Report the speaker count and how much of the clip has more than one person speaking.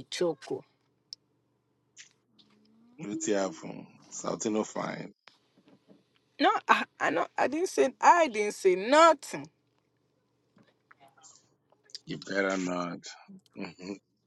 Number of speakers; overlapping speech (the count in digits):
2, no overlap